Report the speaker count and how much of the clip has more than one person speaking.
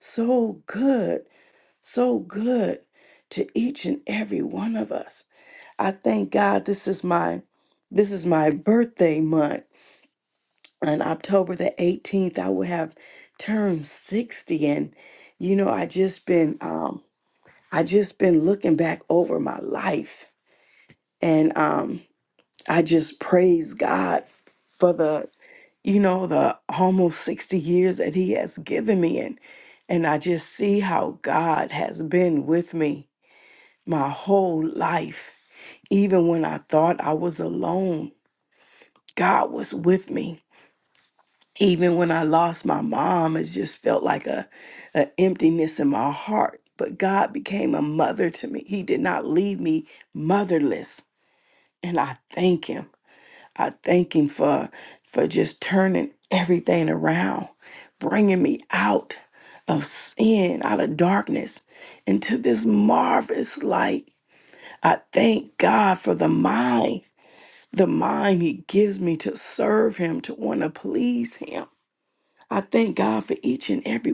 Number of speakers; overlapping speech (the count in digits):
1, no overlap